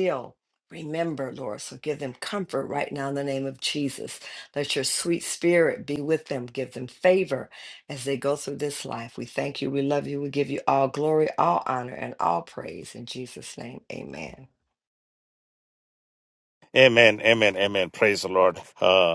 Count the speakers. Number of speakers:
2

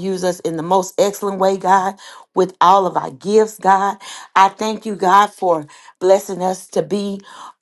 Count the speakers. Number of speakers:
1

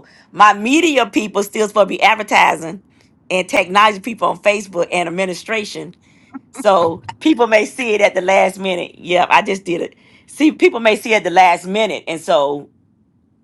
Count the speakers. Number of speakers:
1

